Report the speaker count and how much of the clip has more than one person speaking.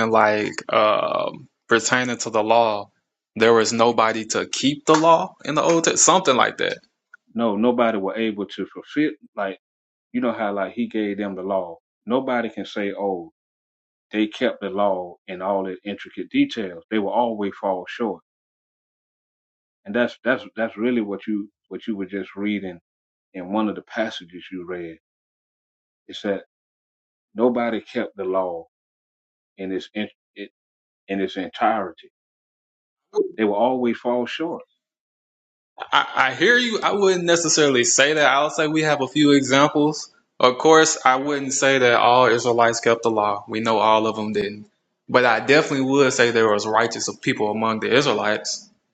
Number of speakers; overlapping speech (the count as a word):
two, no overlap